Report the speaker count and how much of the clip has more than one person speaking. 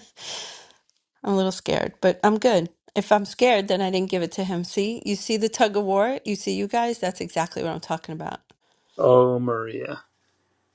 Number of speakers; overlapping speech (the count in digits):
2, no overlap